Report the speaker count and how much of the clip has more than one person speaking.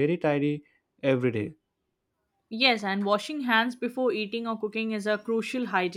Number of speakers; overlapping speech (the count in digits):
2, no overlap